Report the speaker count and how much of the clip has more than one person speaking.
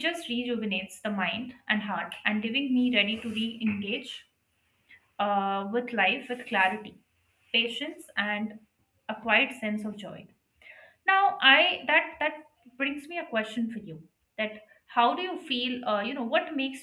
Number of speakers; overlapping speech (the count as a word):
one, no overlap